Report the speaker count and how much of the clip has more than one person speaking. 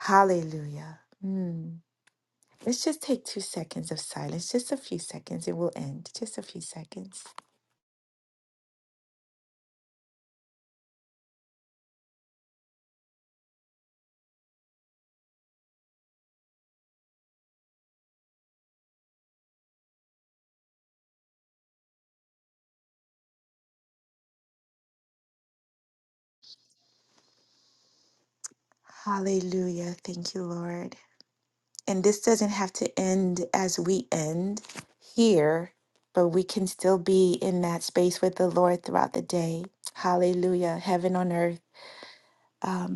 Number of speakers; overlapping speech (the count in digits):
1, no overlap